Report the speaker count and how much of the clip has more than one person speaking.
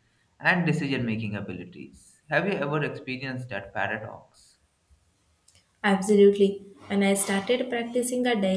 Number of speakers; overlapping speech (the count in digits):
2, no overlap